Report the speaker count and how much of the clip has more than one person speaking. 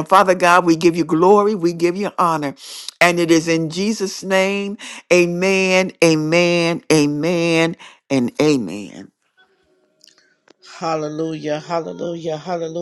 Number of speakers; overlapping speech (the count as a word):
two, no overlap